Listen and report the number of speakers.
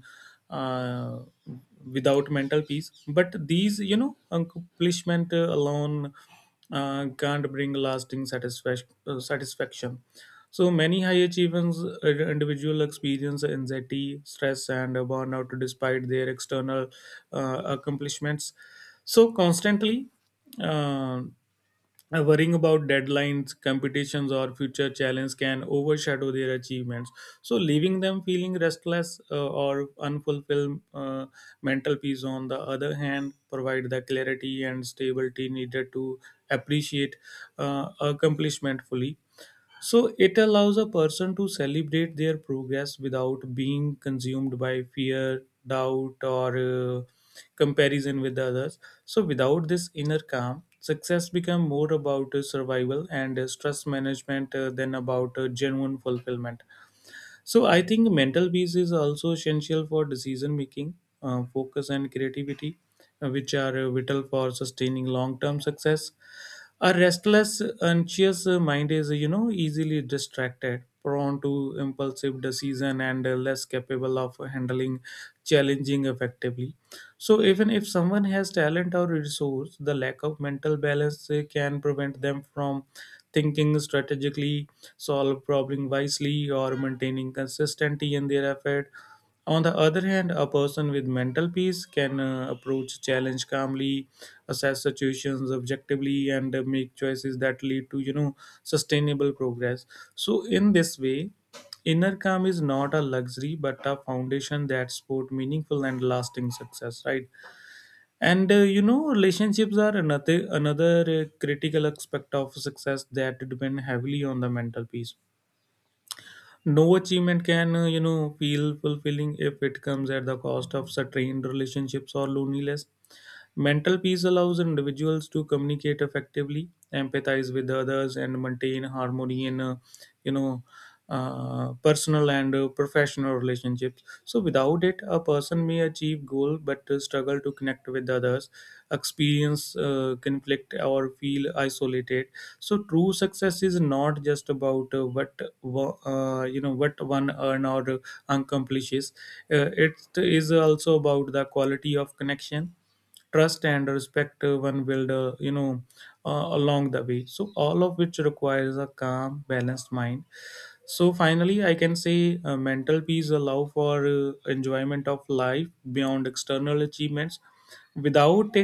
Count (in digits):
1